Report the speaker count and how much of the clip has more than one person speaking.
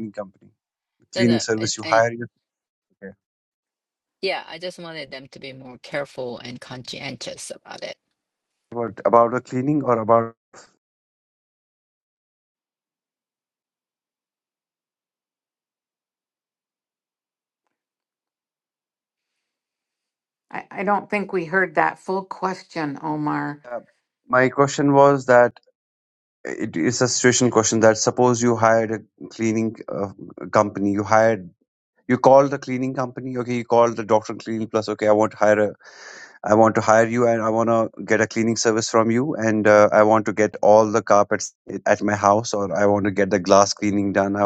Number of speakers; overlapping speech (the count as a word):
three, about 2%